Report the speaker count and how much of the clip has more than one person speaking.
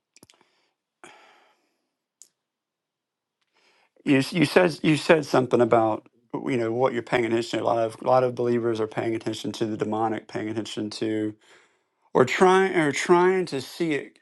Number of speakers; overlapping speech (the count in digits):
1, no overlap